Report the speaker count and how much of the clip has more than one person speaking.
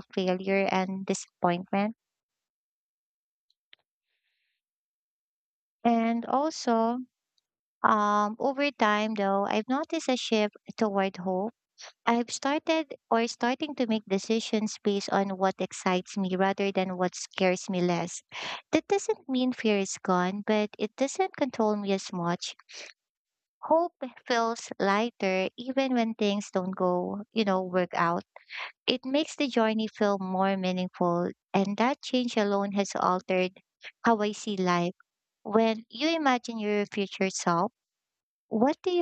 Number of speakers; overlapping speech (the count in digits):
1, no overlap